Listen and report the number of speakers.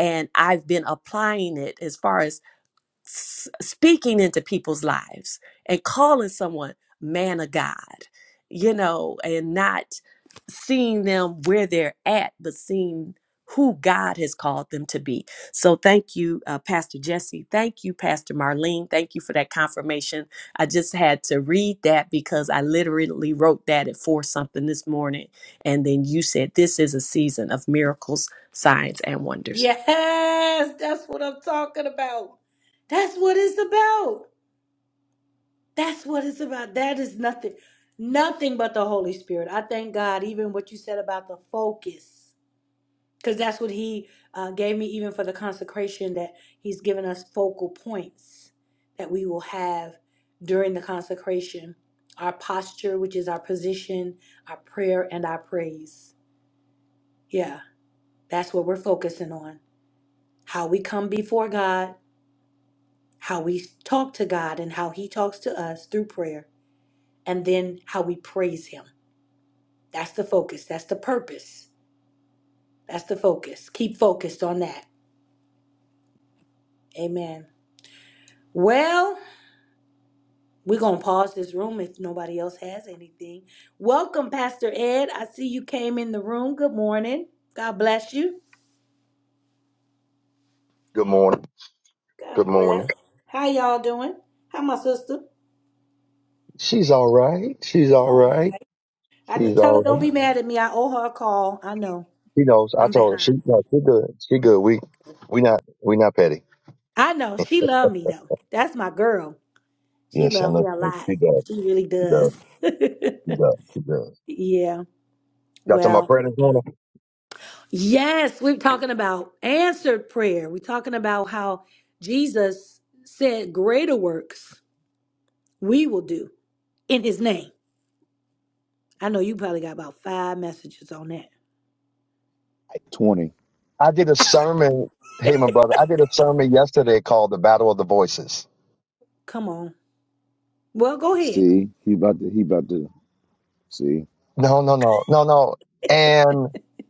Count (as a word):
four